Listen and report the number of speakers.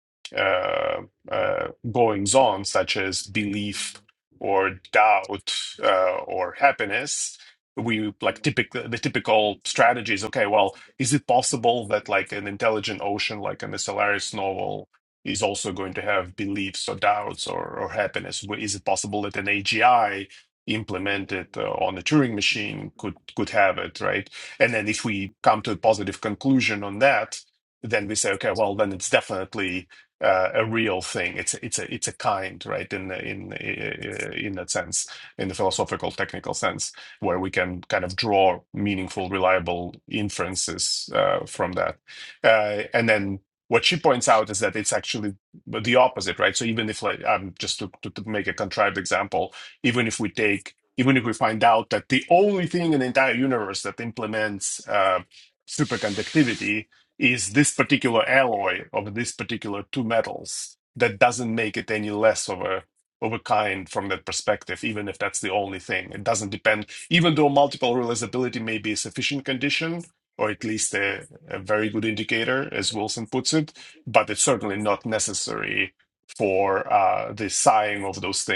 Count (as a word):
one